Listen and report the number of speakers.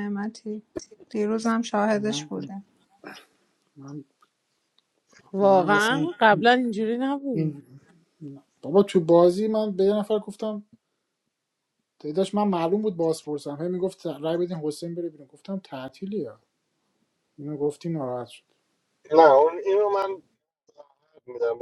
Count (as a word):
four